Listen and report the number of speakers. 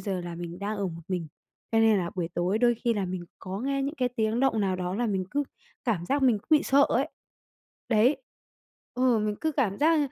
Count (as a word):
one